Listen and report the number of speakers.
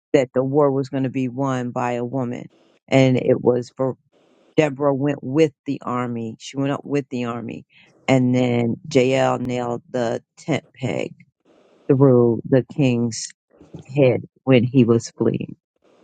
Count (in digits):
1